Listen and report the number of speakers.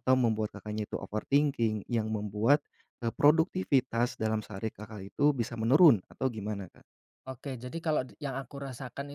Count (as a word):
two